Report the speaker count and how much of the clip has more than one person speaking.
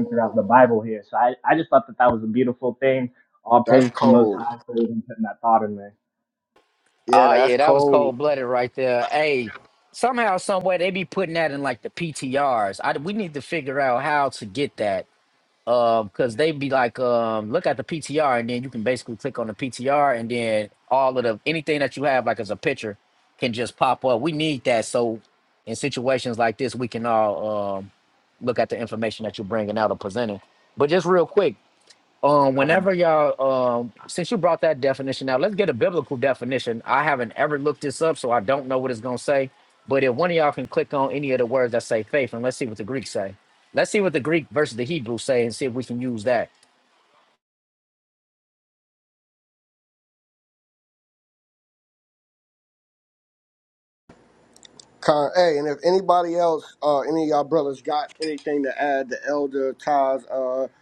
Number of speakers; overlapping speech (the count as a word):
three, about 4%